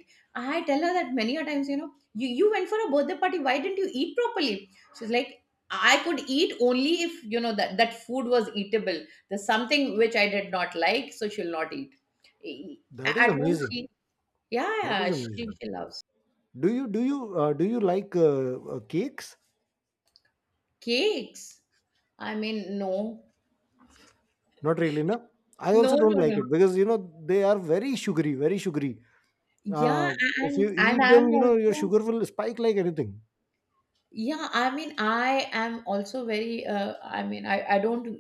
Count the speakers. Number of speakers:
2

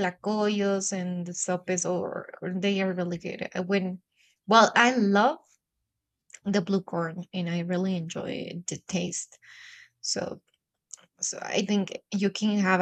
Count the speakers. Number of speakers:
1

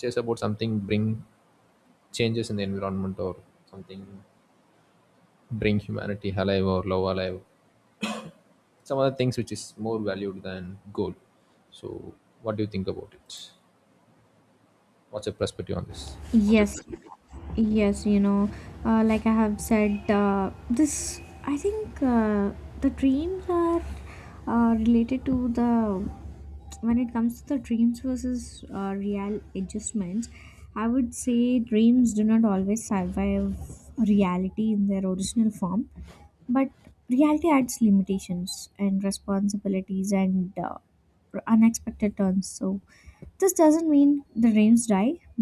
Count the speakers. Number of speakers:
2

